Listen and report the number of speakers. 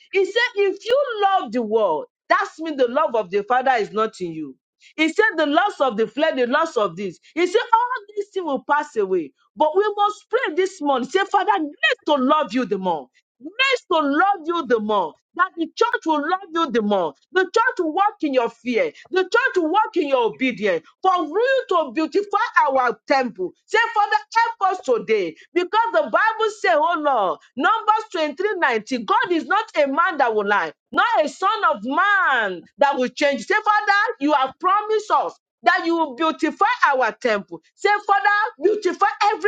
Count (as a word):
one